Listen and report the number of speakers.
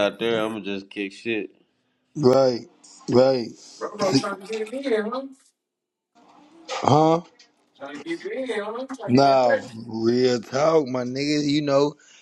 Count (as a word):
three